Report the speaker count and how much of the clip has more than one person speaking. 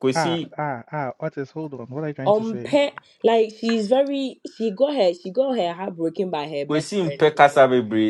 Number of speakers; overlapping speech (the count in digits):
3, about 21%